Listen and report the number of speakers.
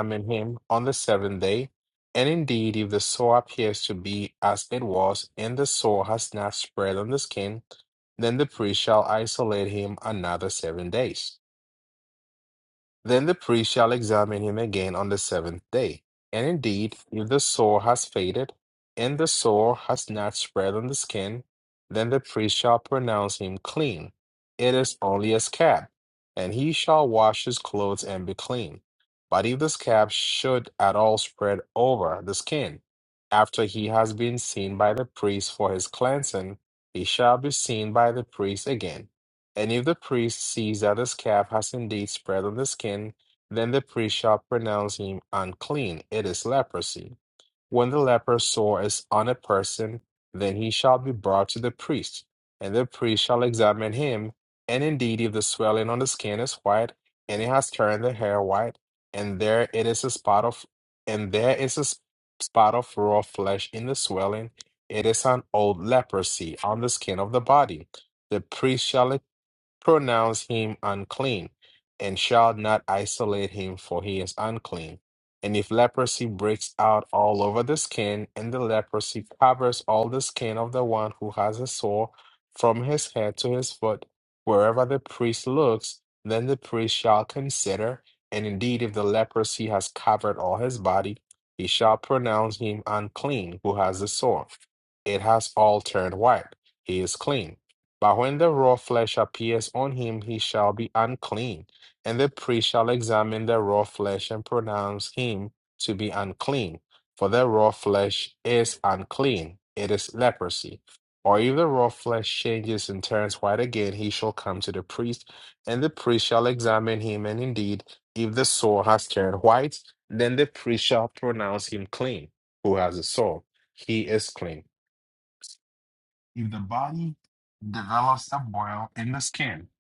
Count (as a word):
one